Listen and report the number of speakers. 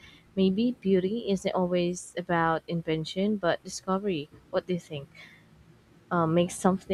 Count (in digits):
1